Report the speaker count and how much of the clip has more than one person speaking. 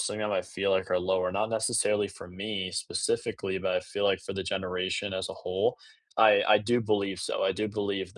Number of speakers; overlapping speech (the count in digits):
1, no overlap